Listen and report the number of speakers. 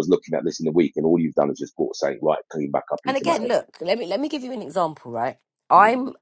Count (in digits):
2